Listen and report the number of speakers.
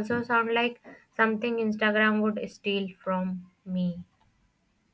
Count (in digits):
1